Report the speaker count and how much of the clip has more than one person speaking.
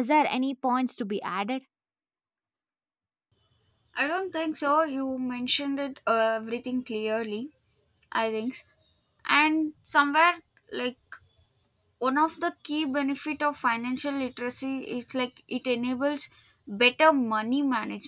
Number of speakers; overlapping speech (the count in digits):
2, no overlap